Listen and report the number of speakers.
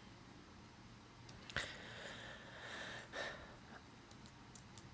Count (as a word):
zero